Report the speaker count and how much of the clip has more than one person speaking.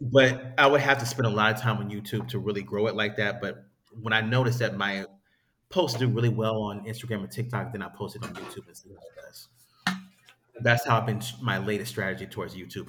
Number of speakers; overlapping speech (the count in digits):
1, no overlap